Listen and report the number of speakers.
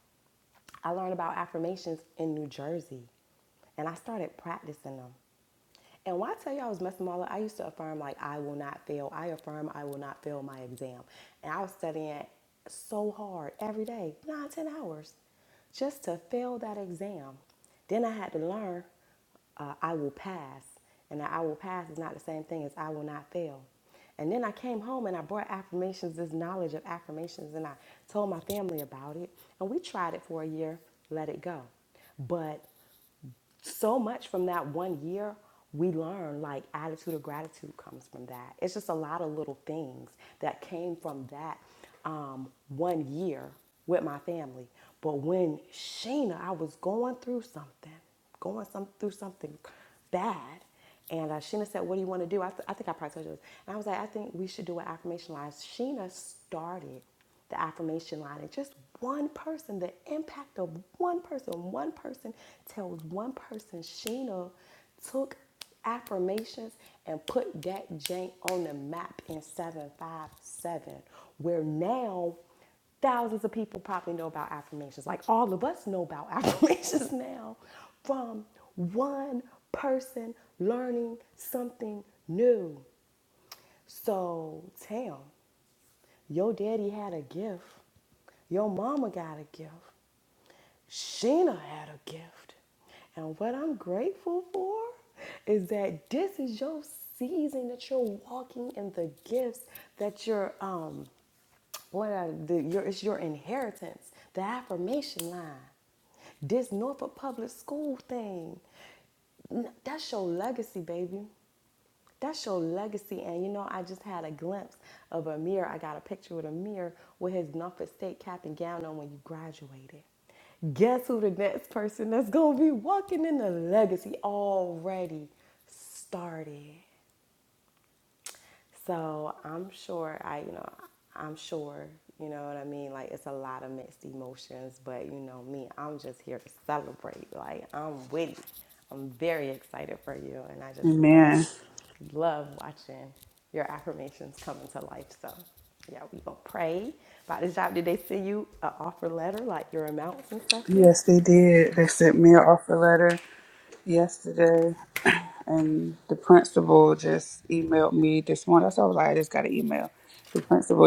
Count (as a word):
two